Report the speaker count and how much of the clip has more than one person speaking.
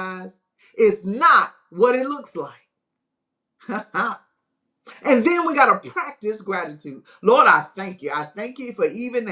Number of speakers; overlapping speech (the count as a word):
one, no overlap